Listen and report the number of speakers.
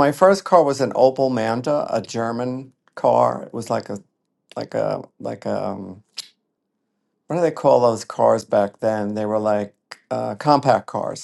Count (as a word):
one